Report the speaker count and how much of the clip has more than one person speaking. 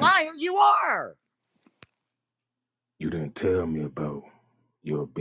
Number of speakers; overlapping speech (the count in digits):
2, no overlap